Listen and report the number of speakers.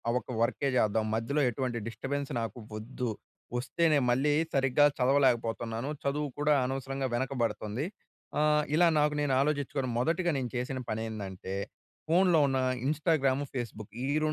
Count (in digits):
1